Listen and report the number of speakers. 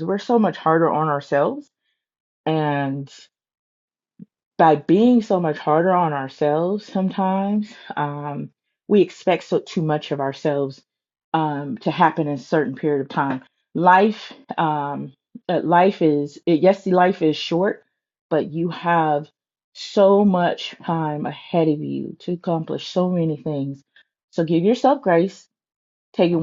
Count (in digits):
1